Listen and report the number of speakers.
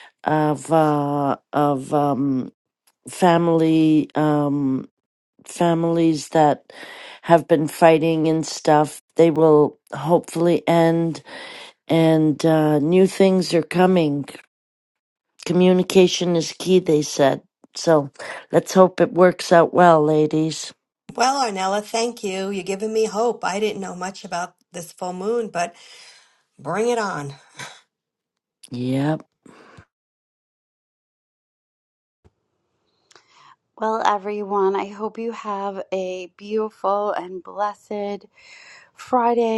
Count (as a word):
three